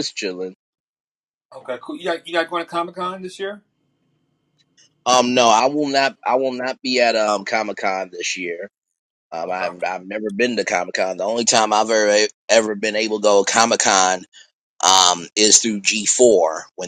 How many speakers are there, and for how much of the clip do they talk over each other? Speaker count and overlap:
2, about 1%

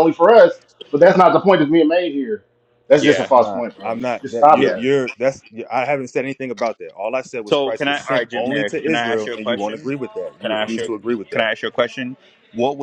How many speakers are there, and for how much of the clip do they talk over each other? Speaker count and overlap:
3, about 36%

